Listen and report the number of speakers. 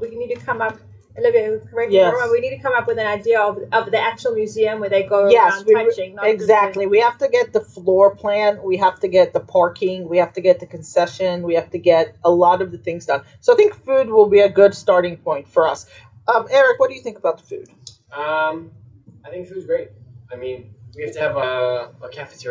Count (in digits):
3